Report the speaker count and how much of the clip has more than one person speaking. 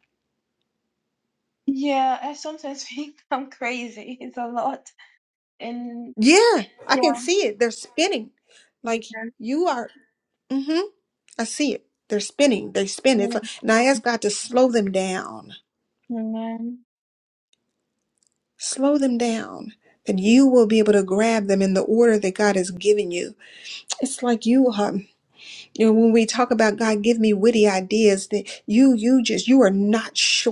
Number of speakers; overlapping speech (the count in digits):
2, about 1%